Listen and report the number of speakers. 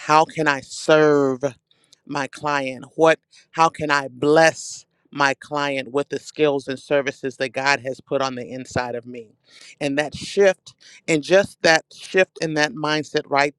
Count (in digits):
1